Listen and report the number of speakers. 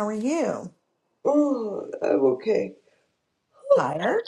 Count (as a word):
two